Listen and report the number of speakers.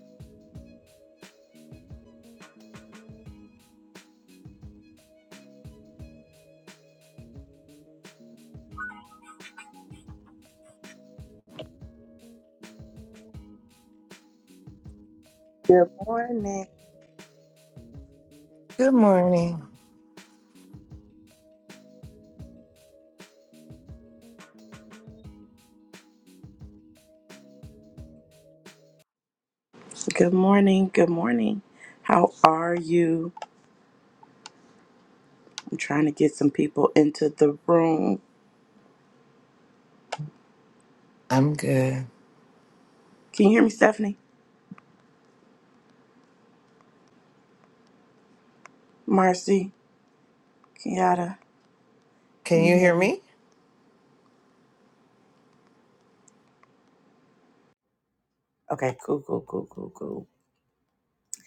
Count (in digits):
2